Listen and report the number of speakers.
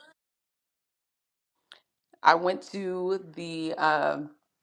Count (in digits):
1